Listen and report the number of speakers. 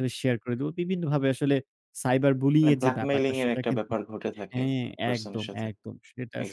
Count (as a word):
two